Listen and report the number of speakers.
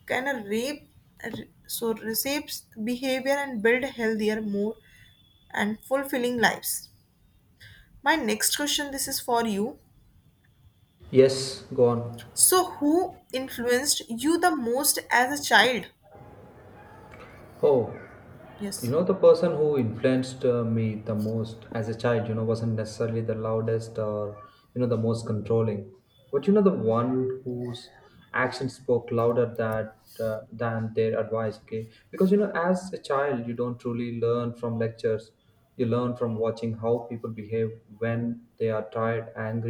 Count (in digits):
2